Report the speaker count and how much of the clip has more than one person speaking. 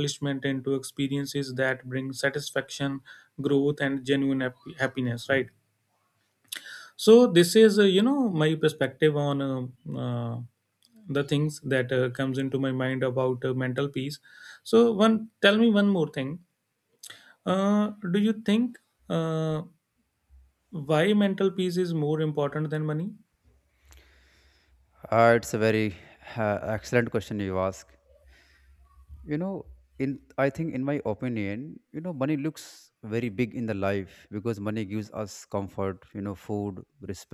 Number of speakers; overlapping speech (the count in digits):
2, no overlap